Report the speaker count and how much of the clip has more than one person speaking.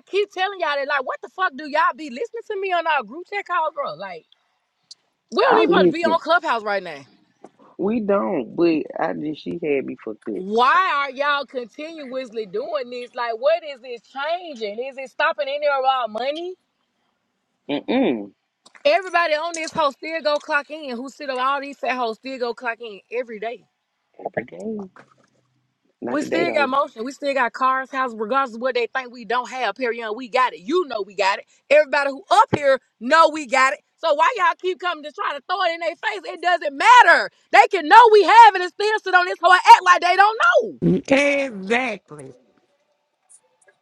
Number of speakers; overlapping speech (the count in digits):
3, about 3%